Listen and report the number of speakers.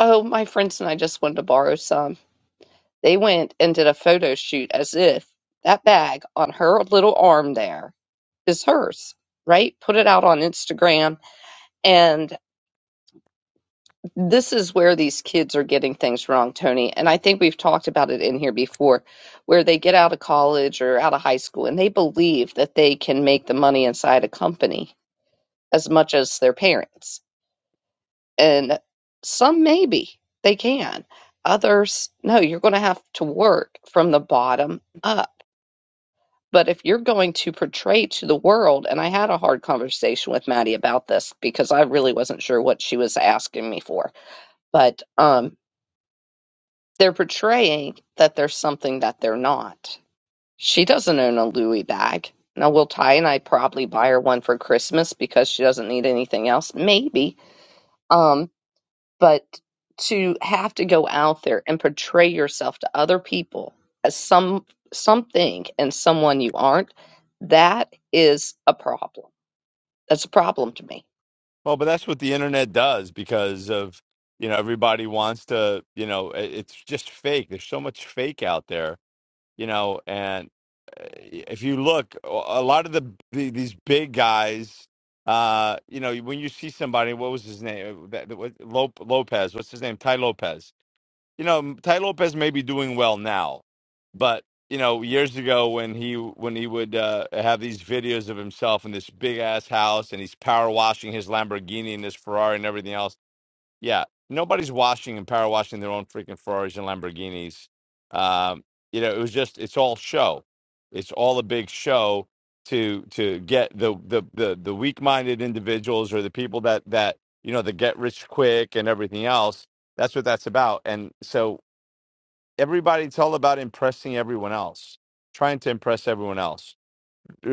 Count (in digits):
2